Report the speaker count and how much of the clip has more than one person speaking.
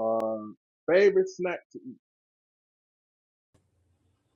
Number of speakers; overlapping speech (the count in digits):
1, no overlap